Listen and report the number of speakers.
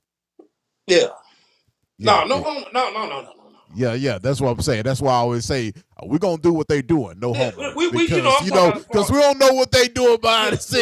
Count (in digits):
2